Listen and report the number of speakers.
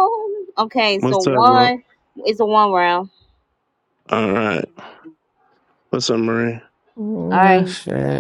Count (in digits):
3